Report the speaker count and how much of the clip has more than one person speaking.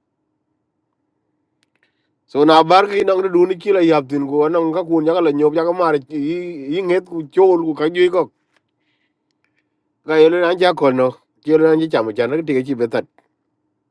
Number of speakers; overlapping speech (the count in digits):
1, no overlap